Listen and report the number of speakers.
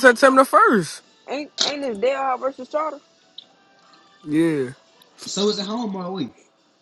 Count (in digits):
3